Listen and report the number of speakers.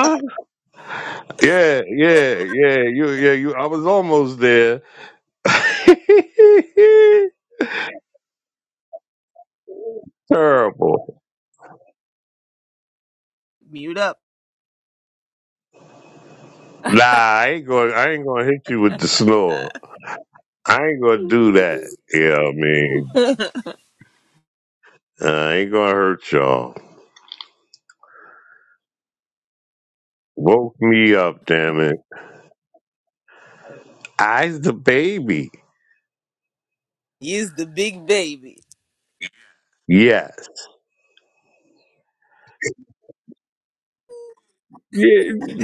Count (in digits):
2